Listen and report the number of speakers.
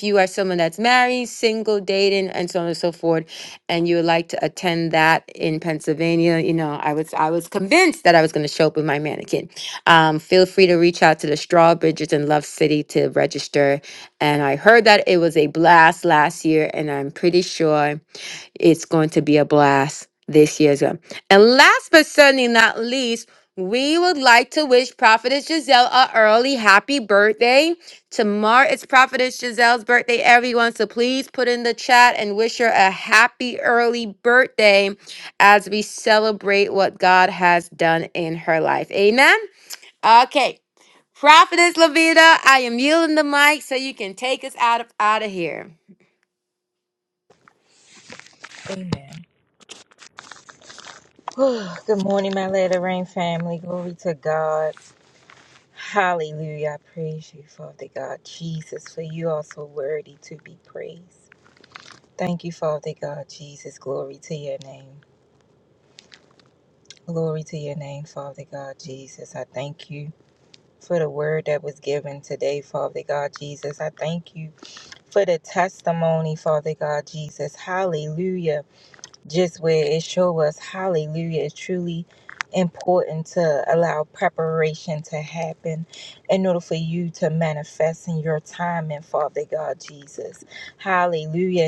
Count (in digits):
2